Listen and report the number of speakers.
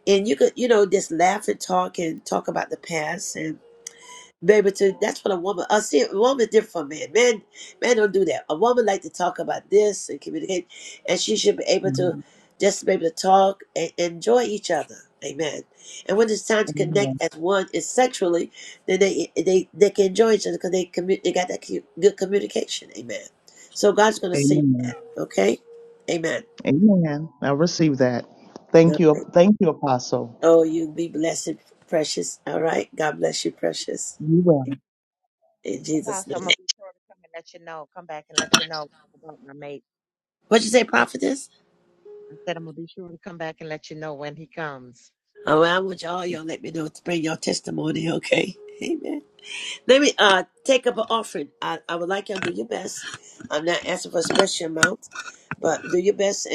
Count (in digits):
3